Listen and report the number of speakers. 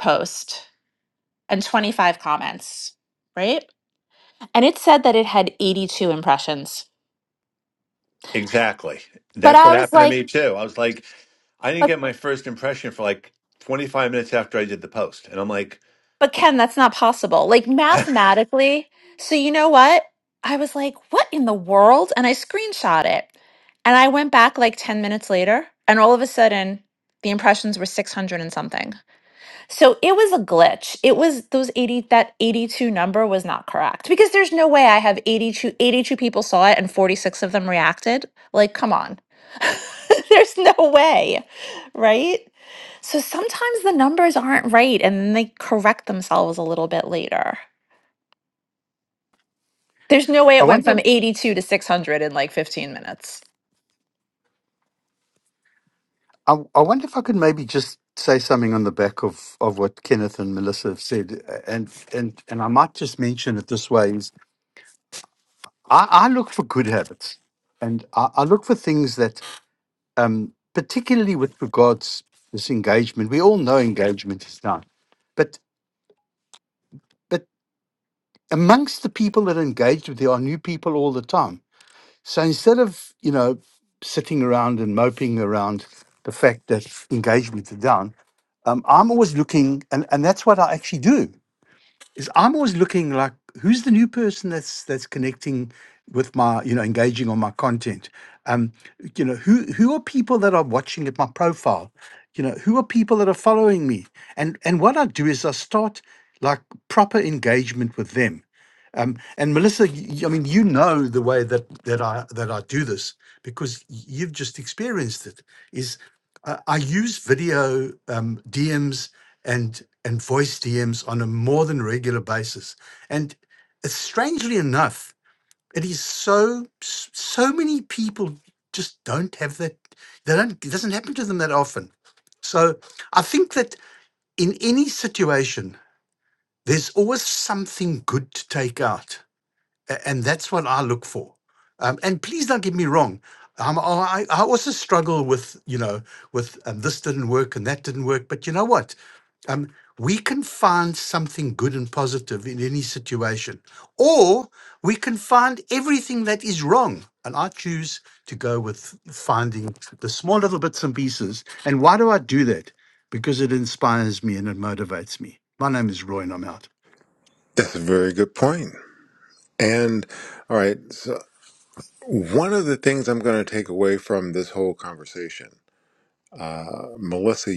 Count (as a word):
four